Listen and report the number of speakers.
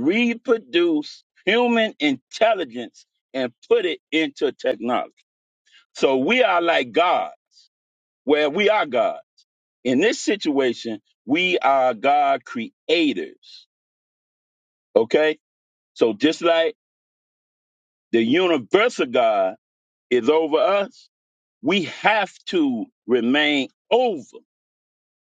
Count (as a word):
one